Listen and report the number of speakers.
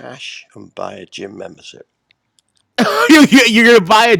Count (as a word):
two